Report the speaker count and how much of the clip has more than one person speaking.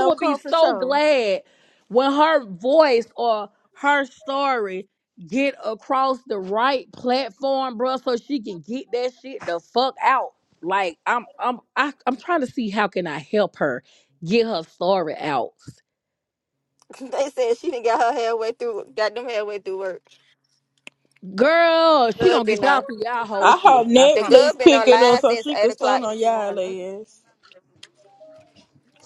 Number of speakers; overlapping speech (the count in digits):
3, about 17%